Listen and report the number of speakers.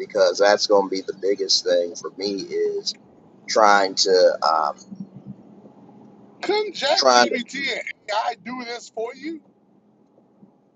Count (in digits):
2